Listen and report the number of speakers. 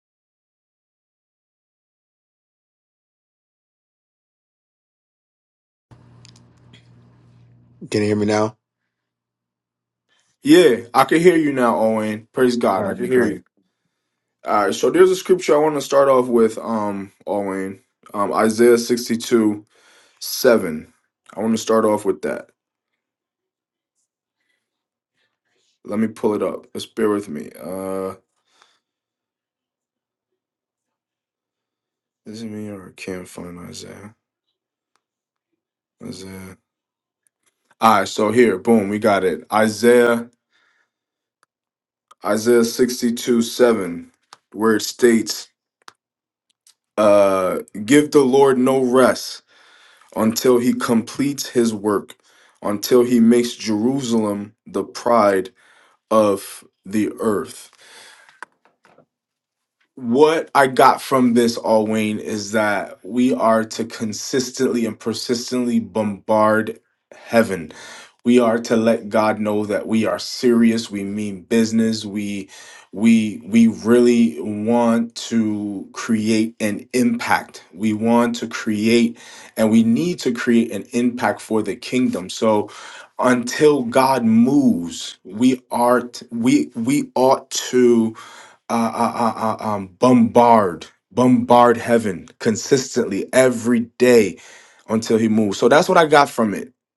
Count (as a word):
two